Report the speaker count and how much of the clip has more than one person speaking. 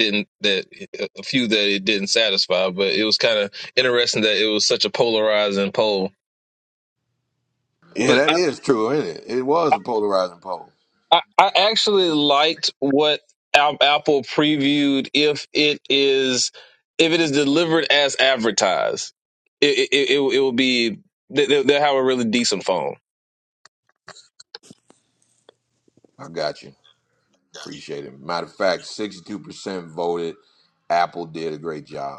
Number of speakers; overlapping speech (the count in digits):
2, under 1%